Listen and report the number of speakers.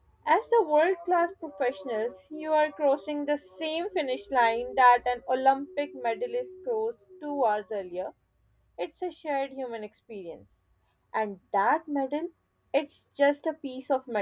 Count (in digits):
1